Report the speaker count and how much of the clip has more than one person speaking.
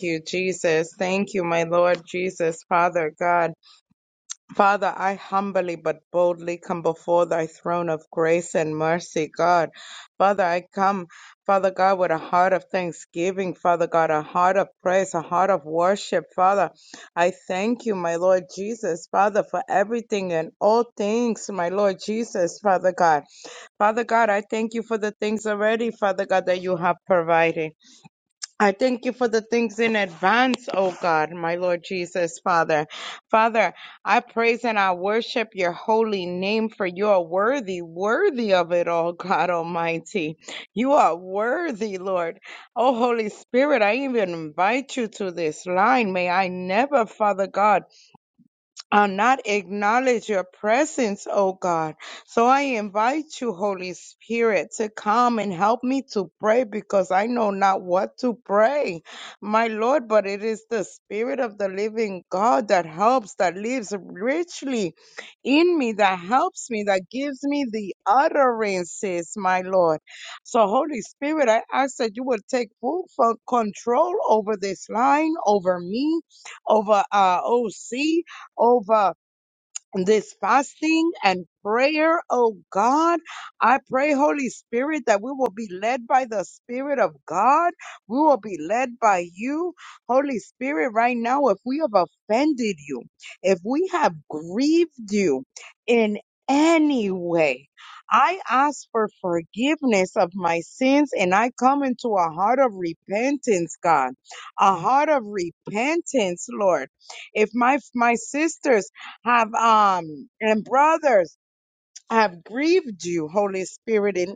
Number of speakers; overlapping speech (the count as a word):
one, no overlap